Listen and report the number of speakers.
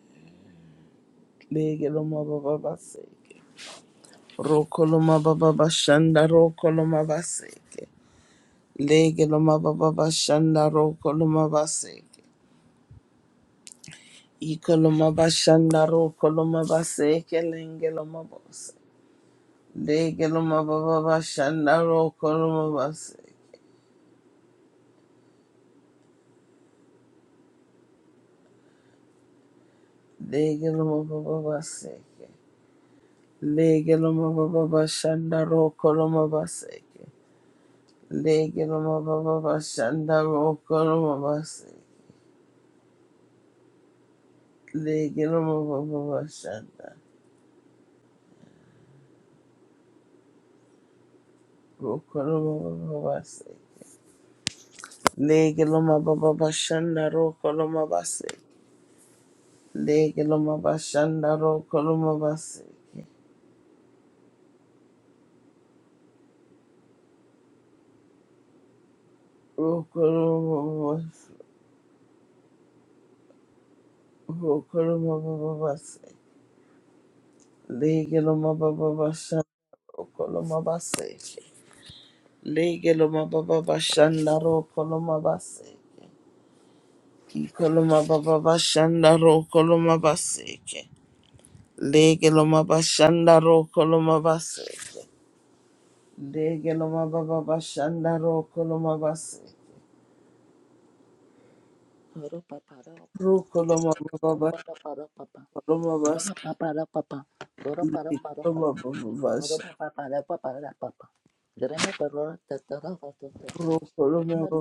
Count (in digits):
2